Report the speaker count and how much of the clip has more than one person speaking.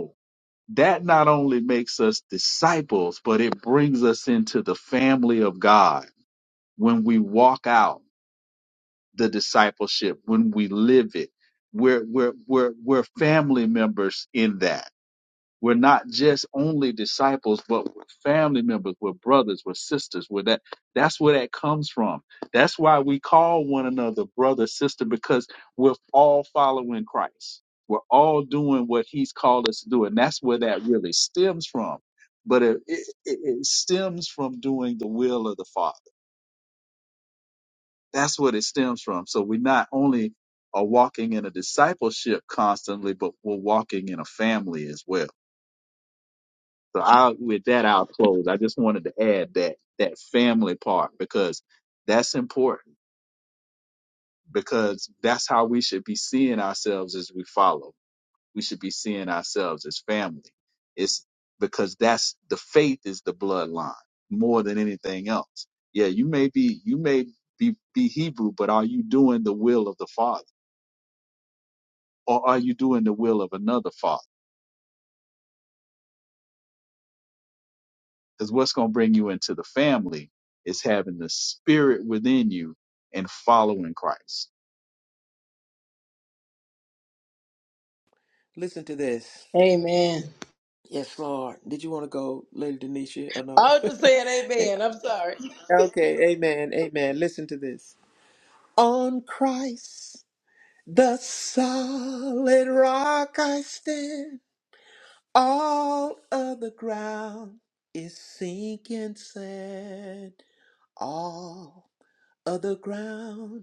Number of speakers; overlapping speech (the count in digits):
3, under 1%